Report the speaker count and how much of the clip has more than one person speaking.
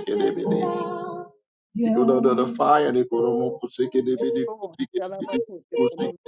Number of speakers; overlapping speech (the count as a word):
two, no overlap